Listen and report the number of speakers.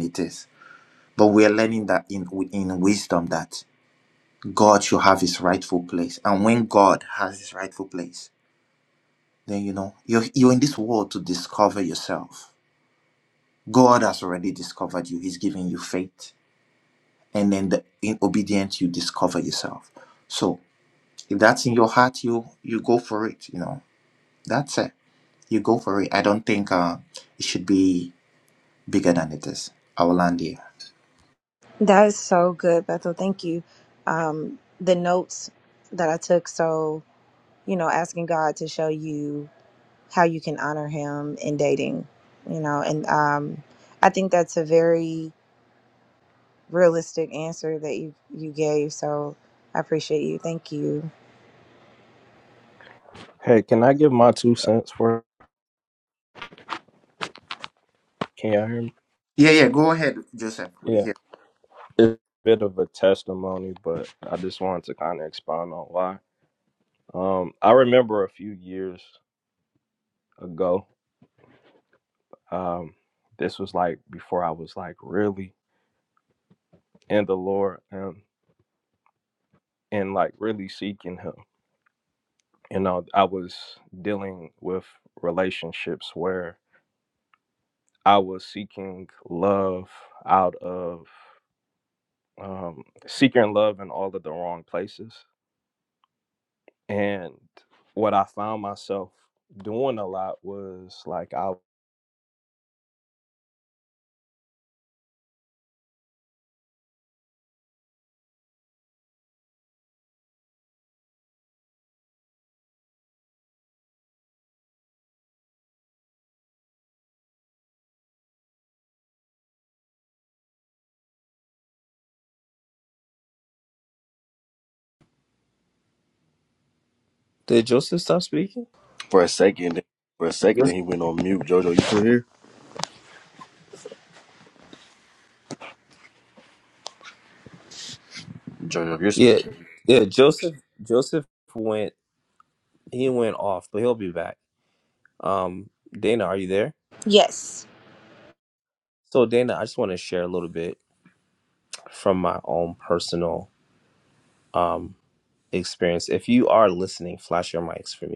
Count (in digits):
5